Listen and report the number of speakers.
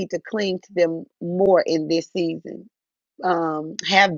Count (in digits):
1